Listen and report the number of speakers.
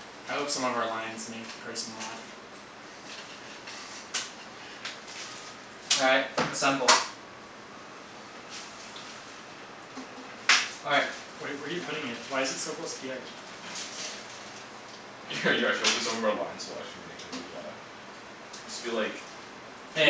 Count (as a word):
three